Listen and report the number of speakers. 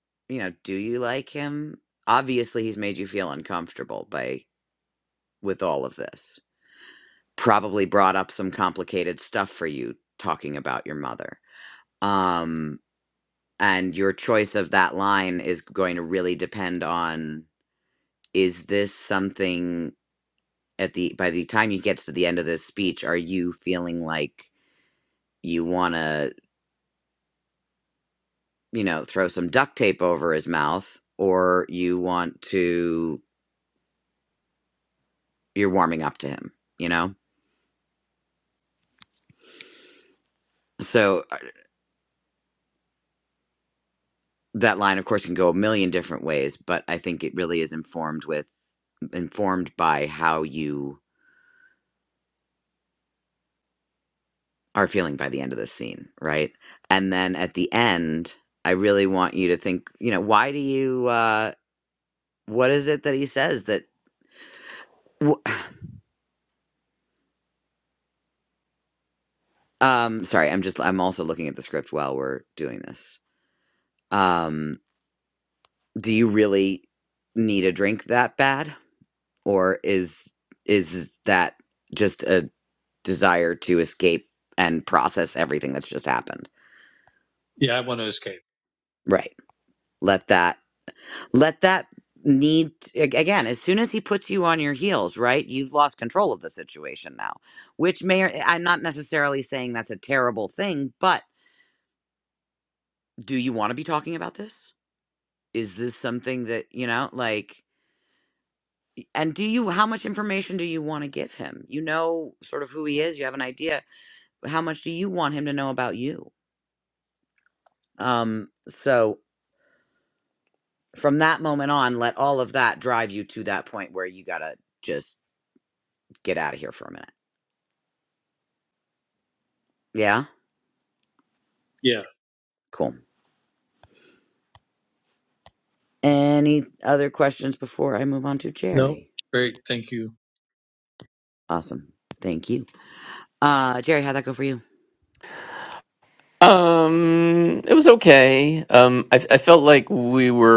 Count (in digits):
3